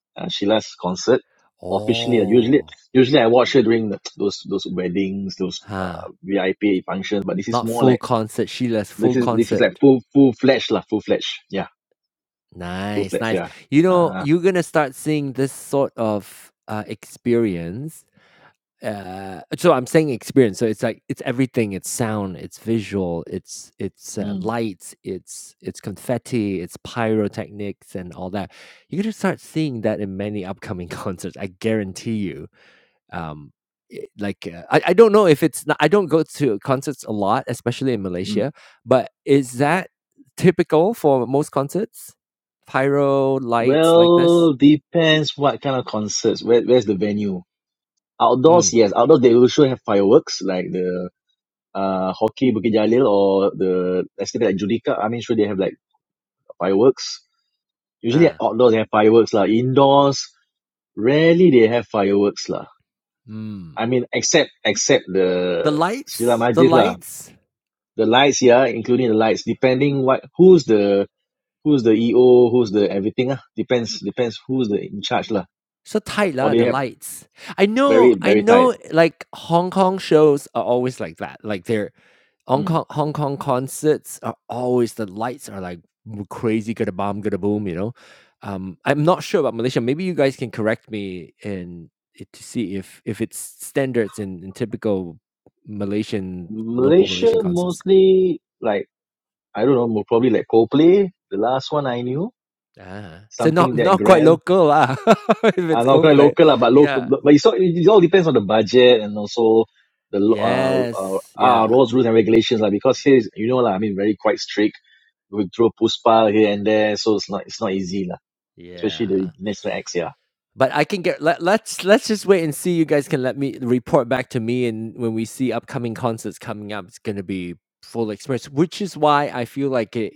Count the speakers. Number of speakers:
two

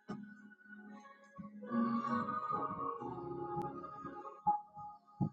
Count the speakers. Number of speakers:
zero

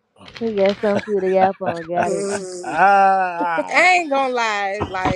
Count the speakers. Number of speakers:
three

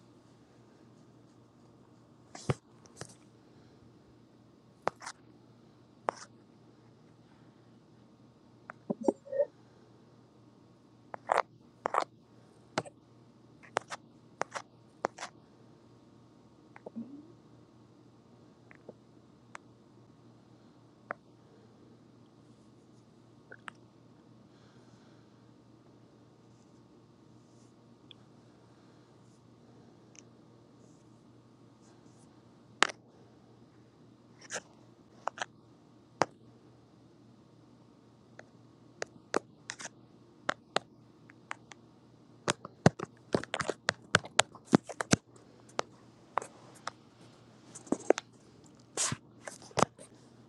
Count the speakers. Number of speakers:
zero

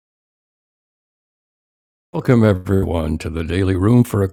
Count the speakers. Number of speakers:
one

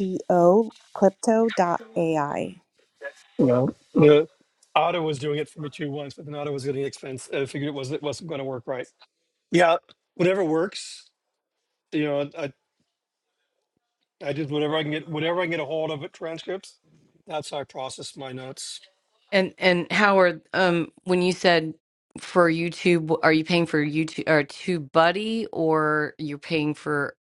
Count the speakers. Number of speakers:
three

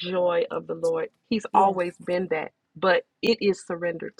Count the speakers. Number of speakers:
one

